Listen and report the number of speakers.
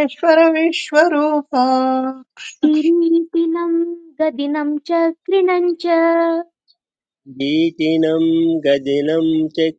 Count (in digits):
3